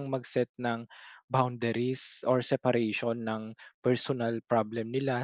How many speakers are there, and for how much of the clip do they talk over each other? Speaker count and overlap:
1, no overlap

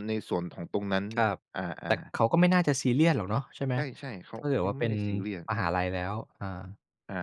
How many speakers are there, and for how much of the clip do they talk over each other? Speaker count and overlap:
2, about 13%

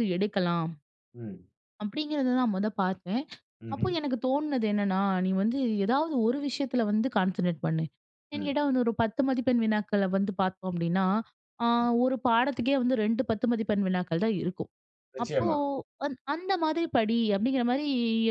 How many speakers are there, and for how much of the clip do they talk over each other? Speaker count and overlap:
2, about 4%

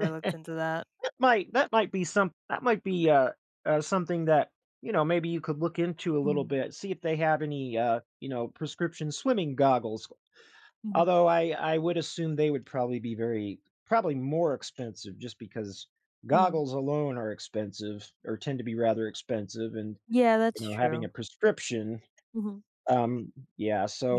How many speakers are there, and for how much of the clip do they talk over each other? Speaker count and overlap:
2, about 5%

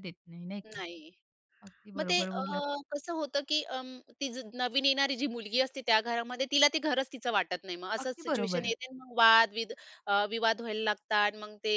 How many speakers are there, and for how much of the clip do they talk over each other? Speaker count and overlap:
2, about 10%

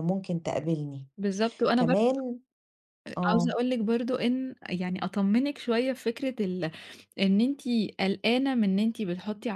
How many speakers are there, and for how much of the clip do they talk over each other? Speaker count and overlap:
2, about 6%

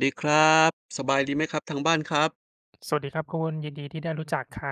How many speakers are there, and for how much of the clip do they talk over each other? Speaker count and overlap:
2, no overlap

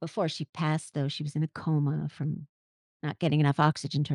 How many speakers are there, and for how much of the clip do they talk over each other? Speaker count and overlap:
1, no overlap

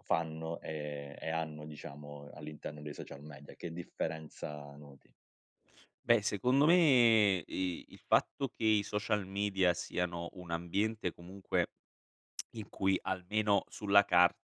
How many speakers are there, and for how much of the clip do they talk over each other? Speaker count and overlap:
2, no overlap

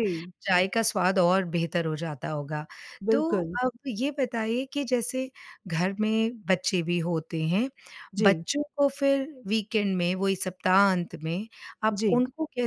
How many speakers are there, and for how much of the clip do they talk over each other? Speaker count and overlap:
2, about 8%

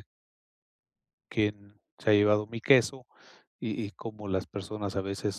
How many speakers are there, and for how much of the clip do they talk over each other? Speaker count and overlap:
1, no overlap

